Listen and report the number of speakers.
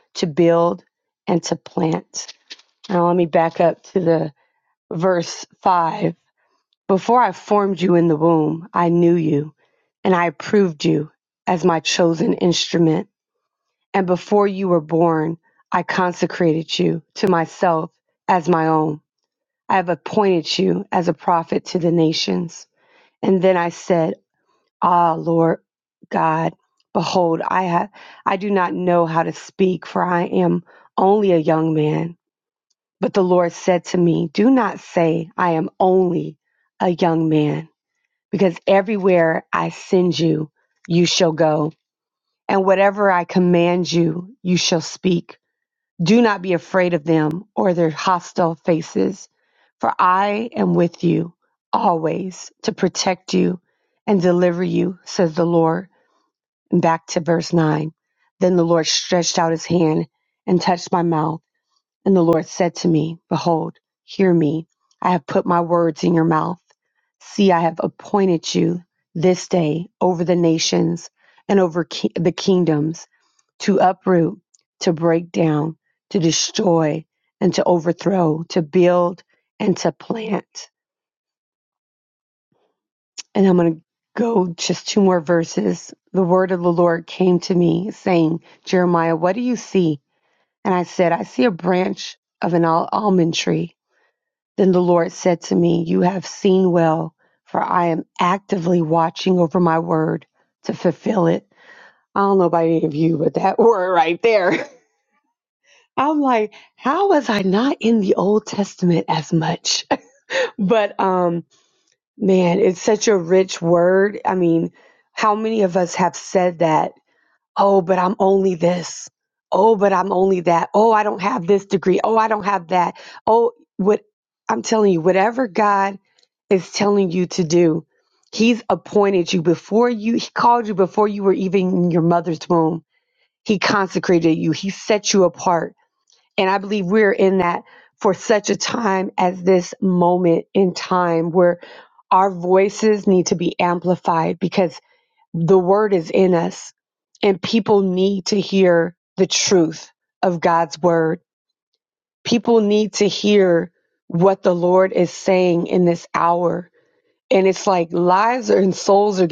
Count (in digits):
1